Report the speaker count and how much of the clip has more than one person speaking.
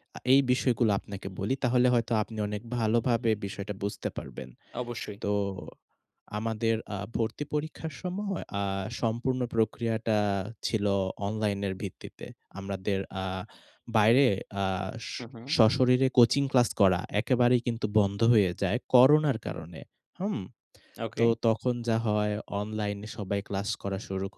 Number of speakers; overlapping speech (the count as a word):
two, about 1%